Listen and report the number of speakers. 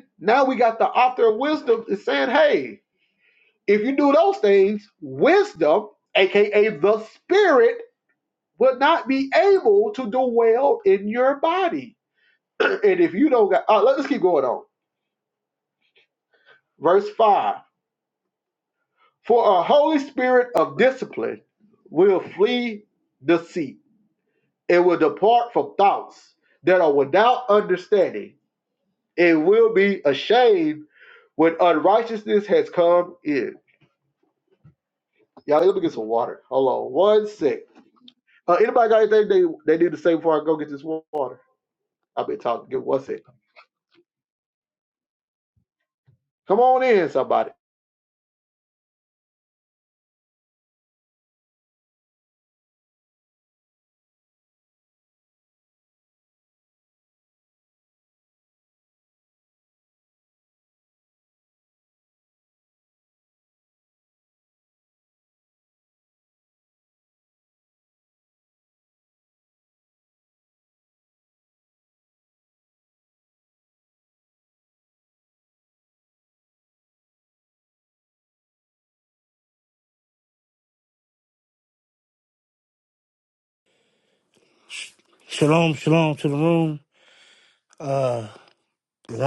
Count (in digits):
2